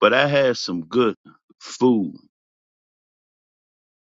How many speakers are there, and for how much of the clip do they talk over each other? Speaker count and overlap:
1, no overlap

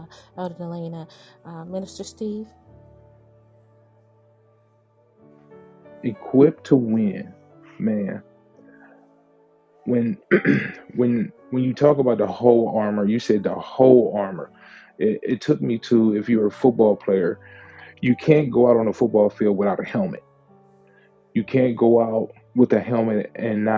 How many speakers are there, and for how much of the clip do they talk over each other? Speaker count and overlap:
2, no overlap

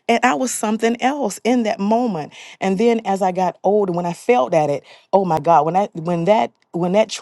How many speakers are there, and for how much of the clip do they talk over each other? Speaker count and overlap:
1, no overlap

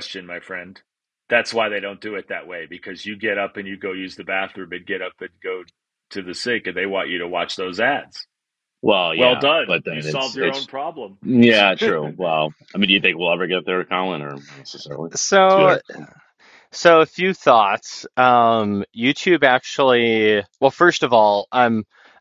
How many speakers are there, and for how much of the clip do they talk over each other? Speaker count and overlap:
3, about 8%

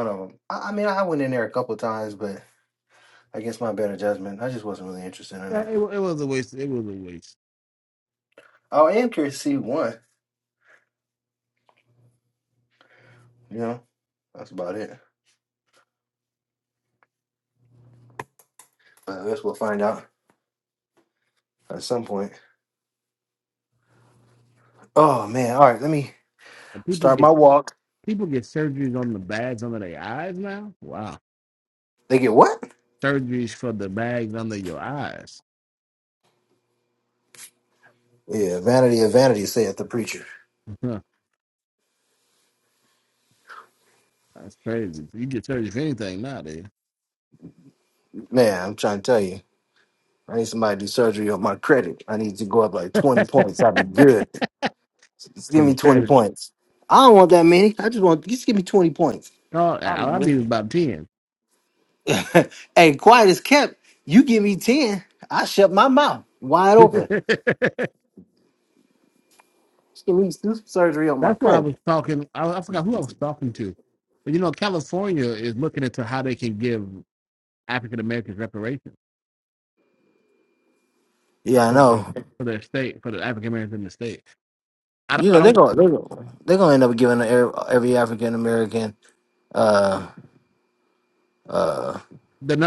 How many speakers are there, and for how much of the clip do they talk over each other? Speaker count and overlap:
2, about 2%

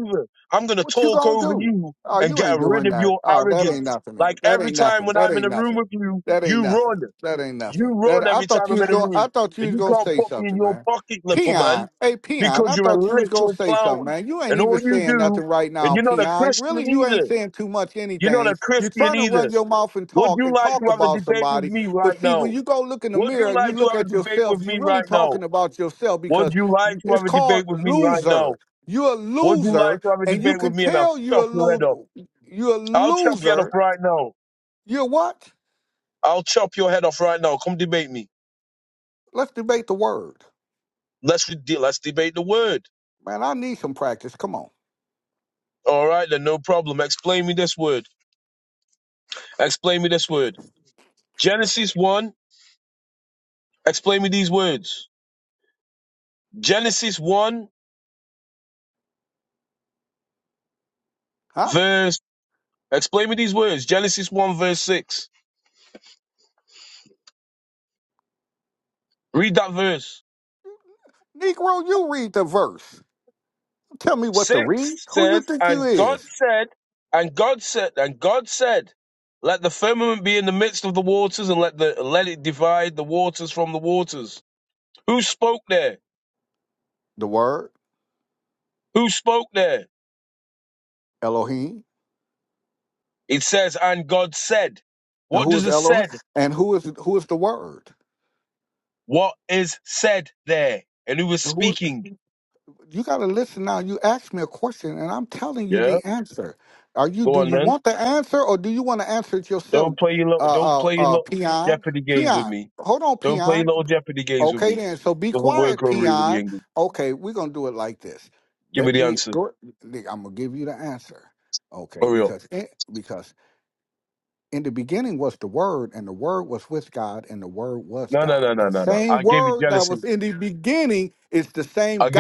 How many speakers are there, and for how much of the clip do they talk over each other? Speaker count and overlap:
2, about 25%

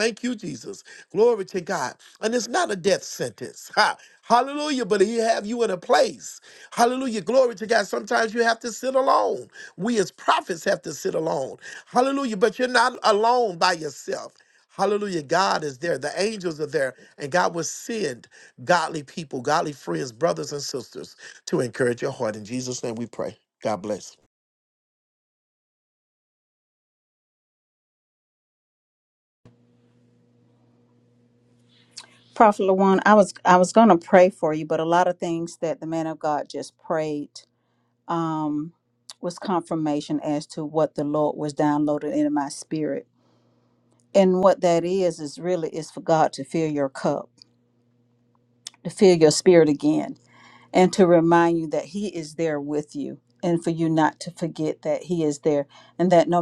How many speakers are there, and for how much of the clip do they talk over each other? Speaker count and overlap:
2, no overlap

